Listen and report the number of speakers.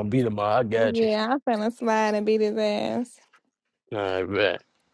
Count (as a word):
two